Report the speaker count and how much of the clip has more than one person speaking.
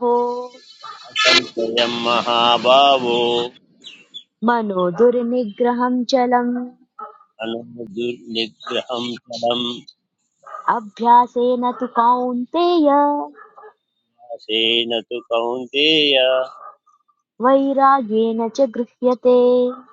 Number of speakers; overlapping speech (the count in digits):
2, no overlap